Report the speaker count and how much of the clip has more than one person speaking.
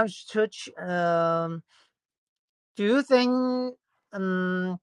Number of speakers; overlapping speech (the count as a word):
one, no overlap